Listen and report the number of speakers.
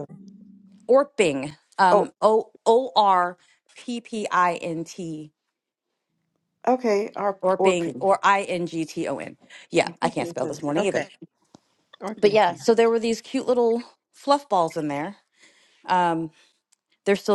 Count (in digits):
3